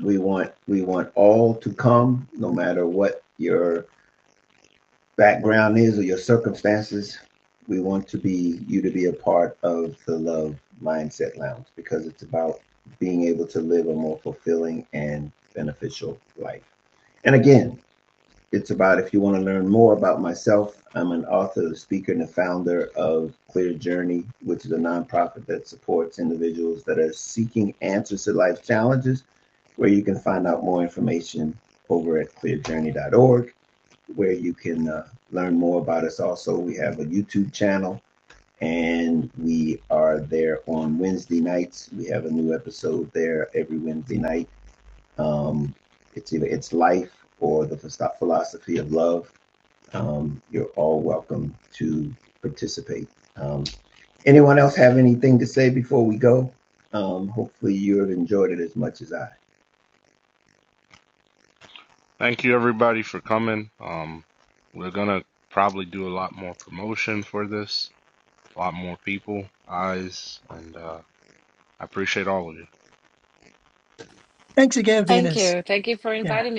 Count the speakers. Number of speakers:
four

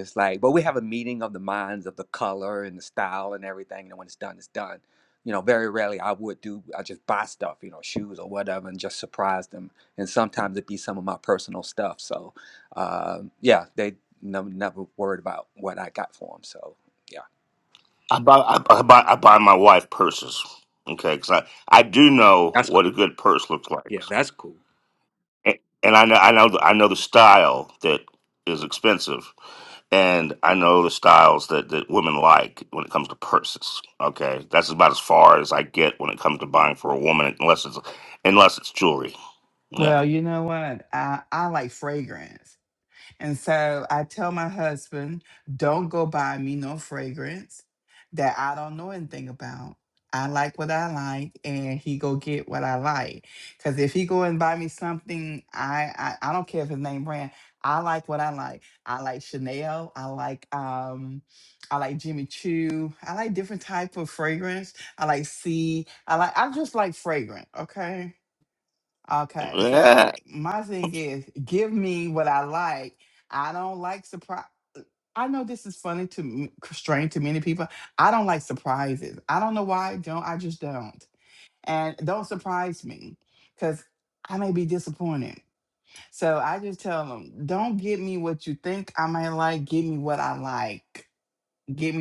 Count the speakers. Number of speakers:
three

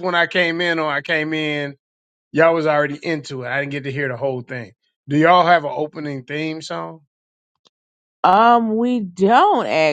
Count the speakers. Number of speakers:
two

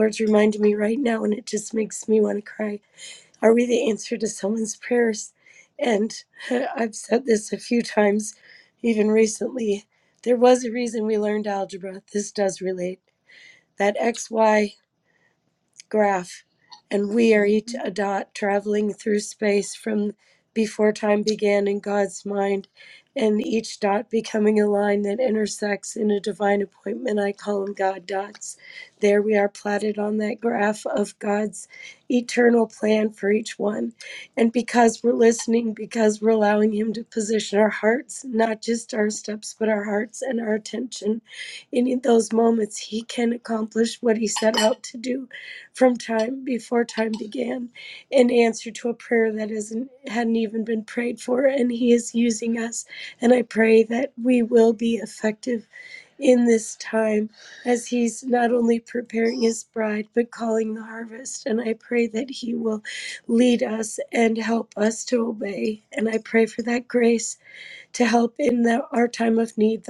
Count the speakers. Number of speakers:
one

